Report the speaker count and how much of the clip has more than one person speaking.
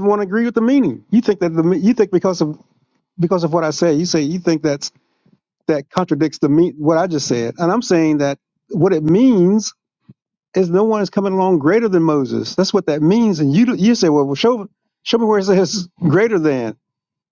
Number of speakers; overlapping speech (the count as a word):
one, no overlap